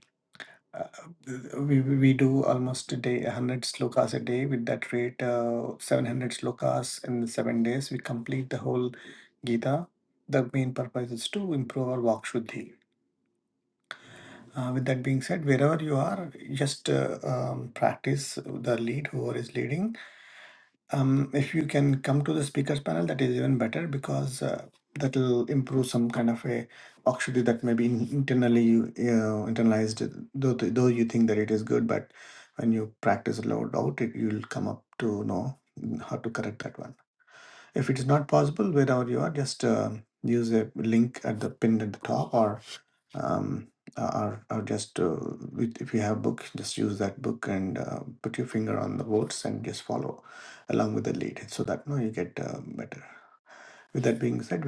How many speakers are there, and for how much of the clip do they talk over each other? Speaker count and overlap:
one, no overlap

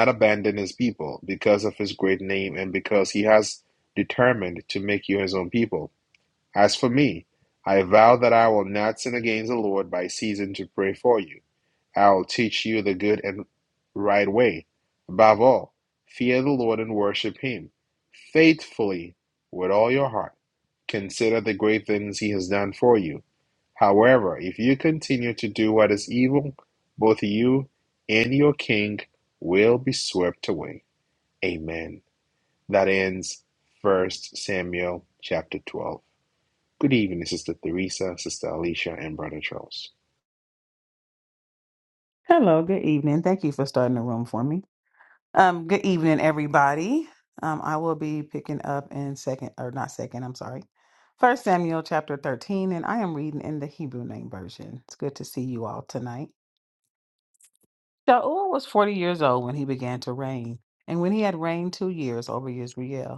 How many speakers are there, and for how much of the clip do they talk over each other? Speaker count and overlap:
two, no overlap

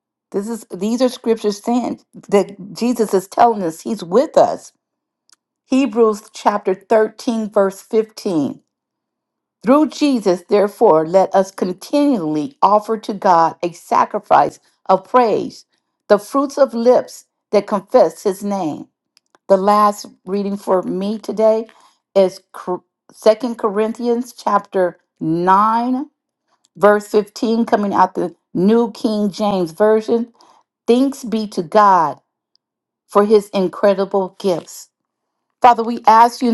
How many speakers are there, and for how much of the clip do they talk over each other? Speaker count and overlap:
one, no overlap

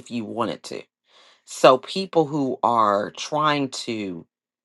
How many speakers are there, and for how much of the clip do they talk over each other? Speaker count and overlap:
one, no overlap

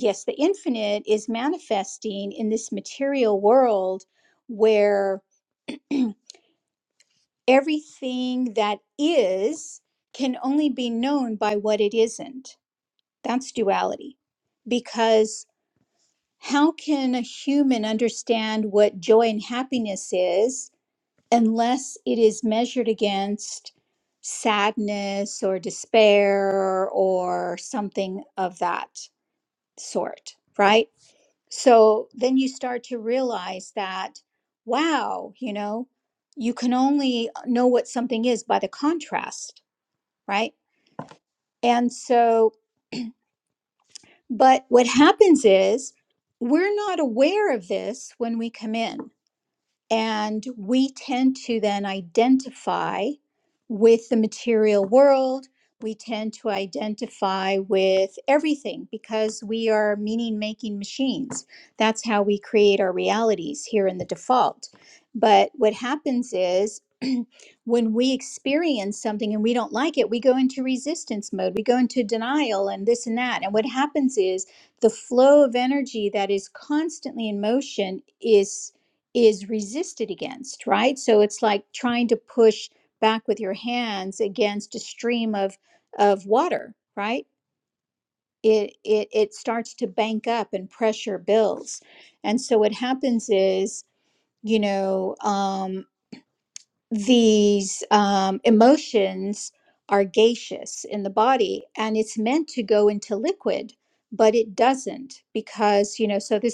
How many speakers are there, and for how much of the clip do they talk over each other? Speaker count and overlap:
one, no overlap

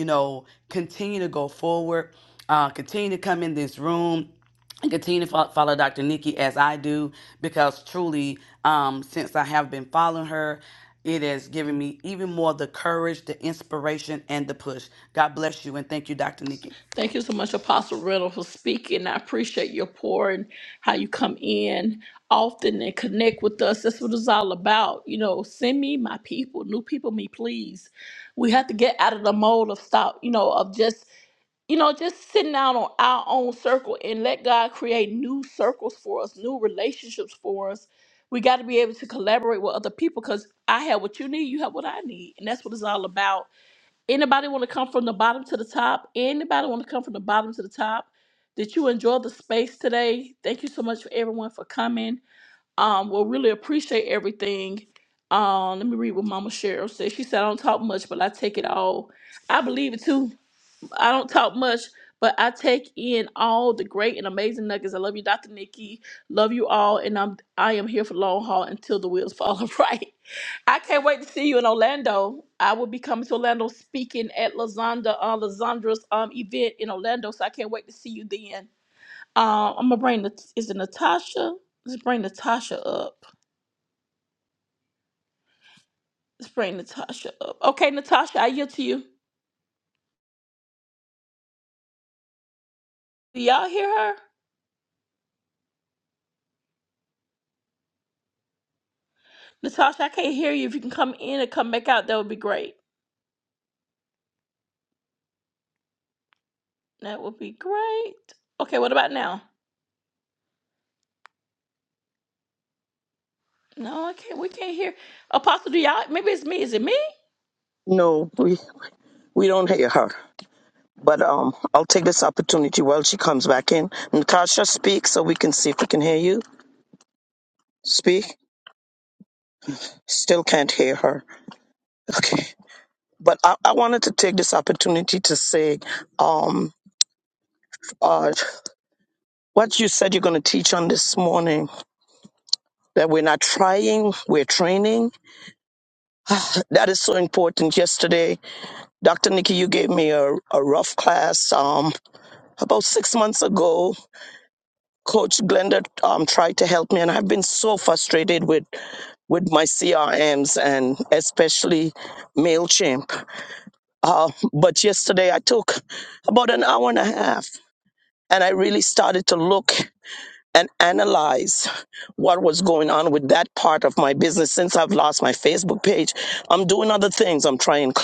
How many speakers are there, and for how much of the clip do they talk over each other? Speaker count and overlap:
three, no overlap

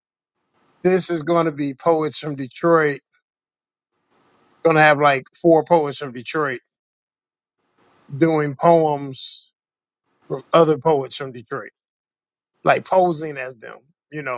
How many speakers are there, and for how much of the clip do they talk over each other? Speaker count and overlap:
one, no overlap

